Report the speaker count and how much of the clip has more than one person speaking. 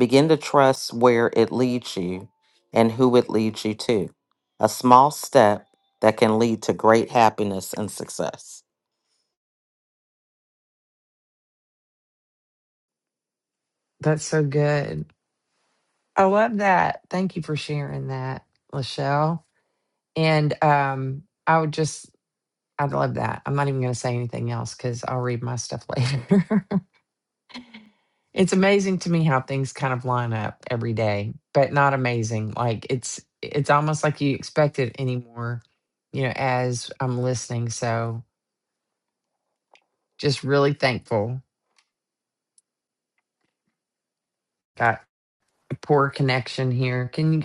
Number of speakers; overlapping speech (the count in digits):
2, no overlap